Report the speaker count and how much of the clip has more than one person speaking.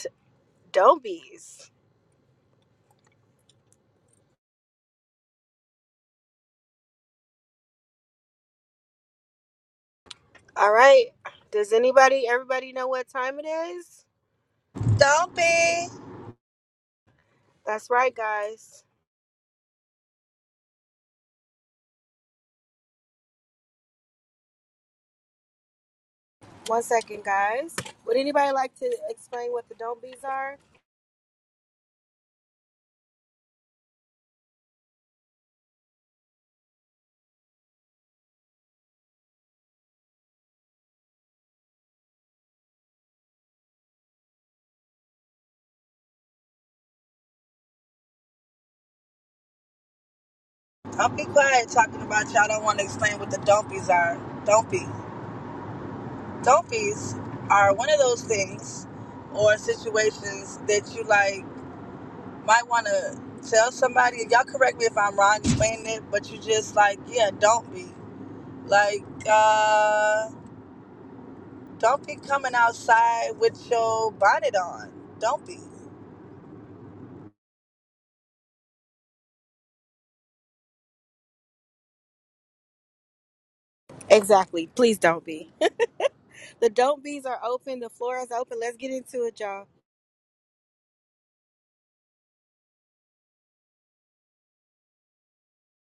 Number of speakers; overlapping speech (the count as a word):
two, no overlap